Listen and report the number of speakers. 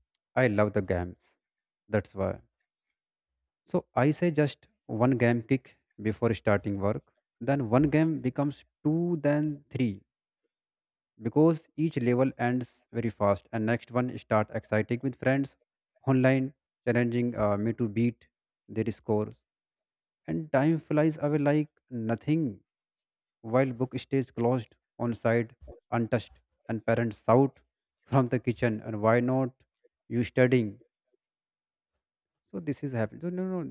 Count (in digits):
1